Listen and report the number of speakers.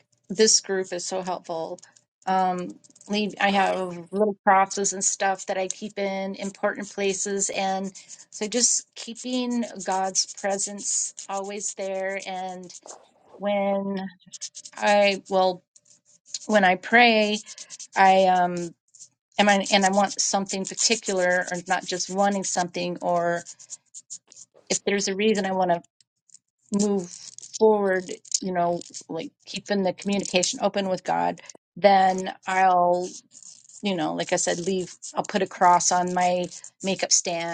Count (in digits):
1